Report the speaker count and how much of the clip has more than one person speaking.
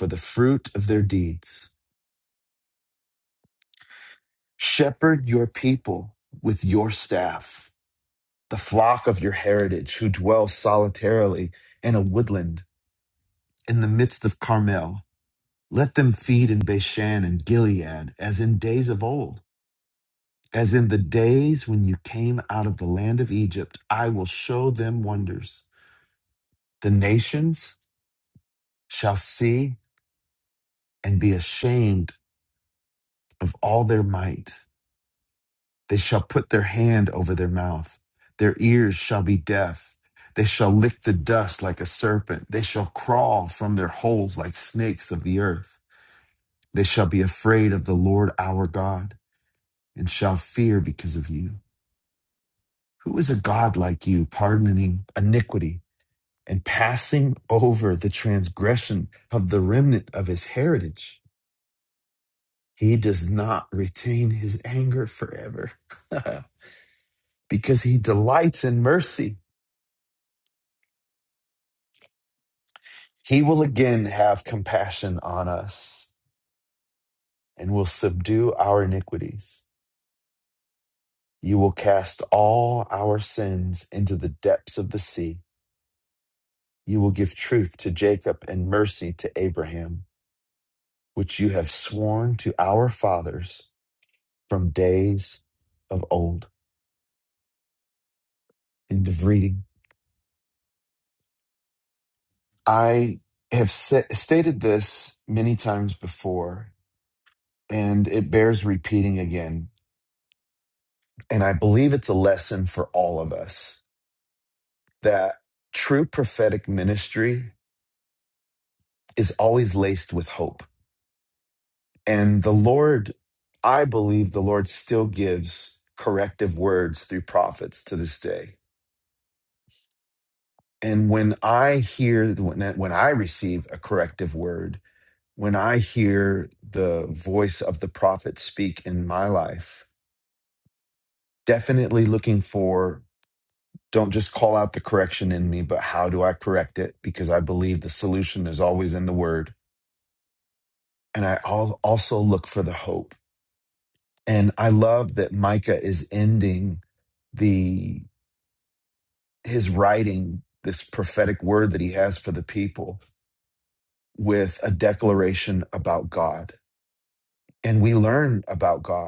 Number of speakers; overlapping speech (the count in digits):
1, no overlap